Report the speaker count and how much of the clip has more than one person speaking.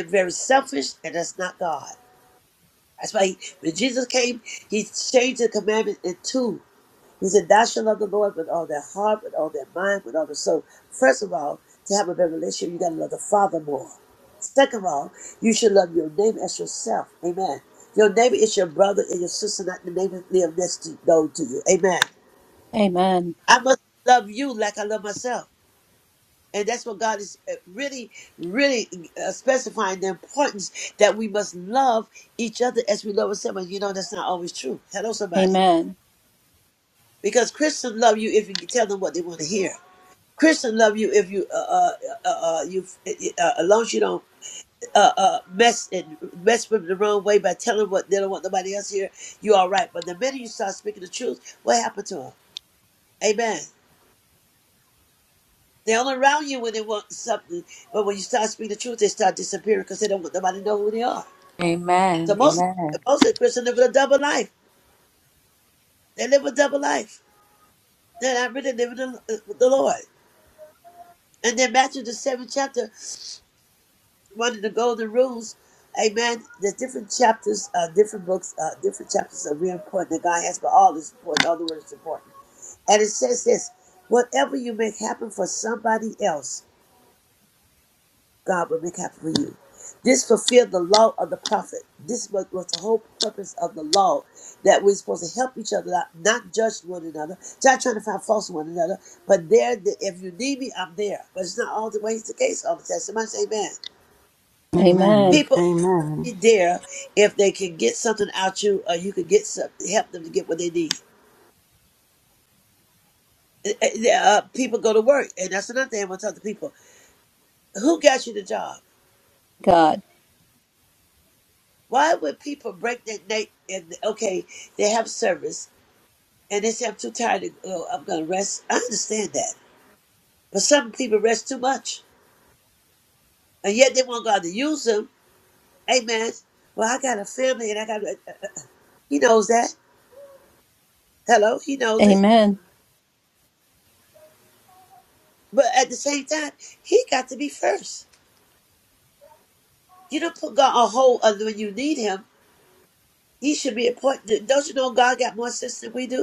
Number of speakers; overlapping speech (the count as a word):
four, about 1%